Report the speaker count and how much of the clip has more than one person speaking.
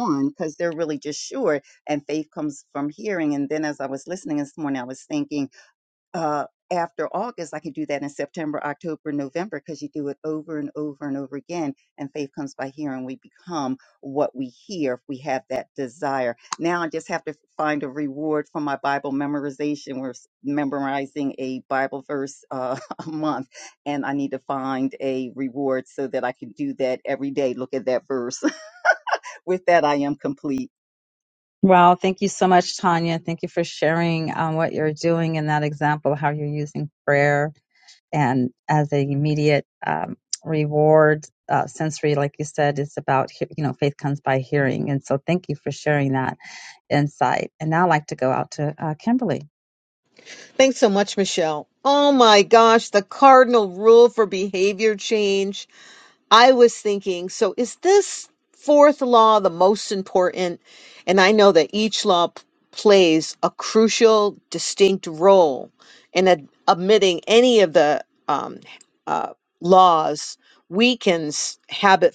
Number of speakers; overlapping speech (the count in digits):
3, no overlap